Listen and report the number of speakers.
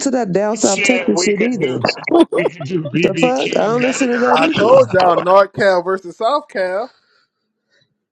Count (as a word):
three